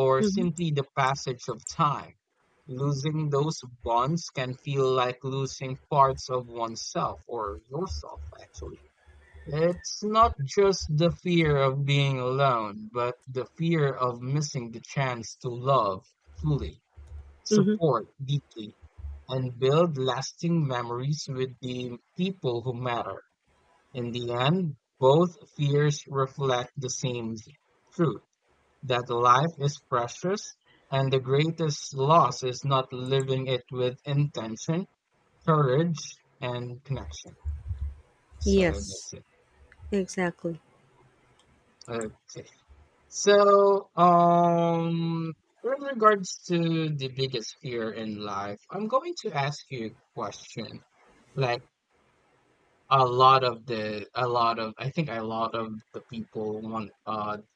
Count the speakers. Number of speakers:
2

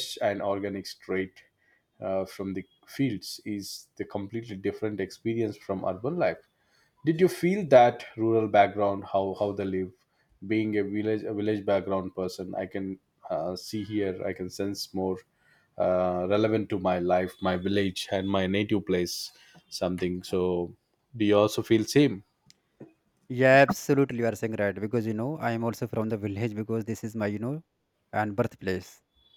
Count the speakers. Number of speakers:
2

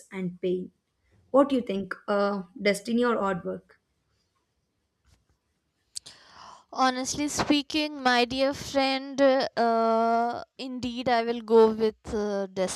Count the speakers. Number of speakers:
2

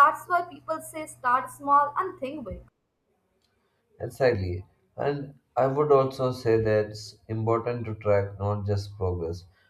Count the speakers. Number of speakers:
2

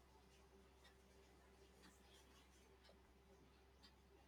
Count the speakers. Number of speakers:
0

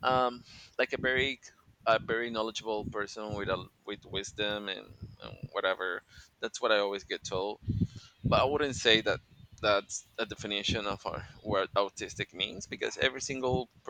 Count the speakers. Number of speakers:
1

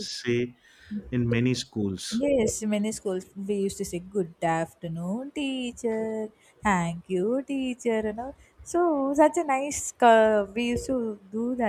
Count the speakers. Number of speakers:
2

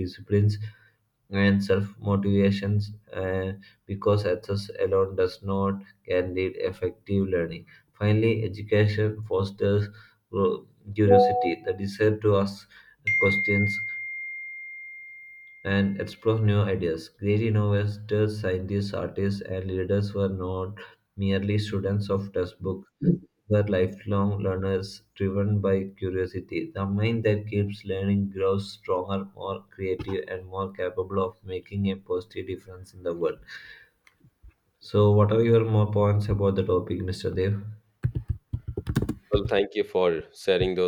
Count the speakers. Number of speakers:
2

